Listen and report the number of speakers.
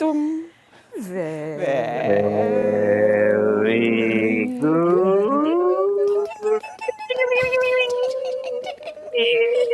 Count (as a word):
three